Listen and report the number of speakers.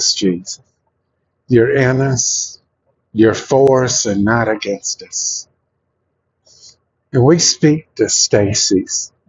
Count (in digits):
1